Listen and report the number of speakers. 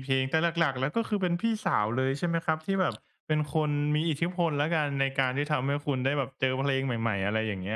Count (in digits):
1